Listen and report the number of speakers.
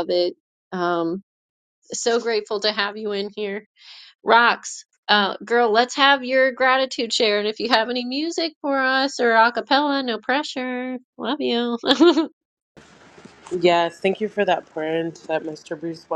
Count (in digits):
2